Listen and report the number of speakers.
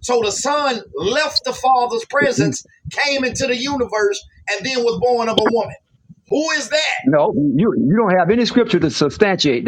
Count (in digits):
2